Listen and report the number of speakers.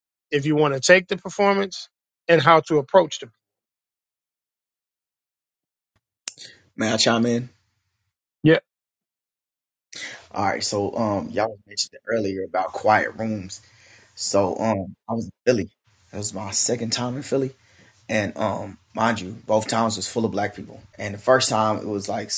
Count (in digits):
2